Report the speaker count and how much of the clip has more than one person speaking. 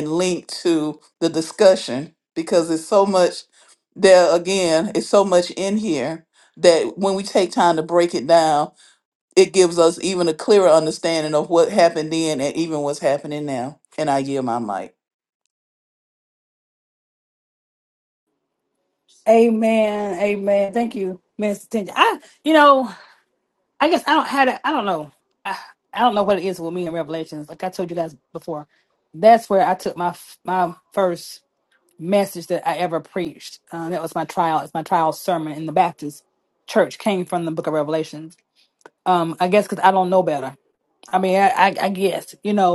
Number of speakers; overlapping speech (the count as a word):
two, no overlap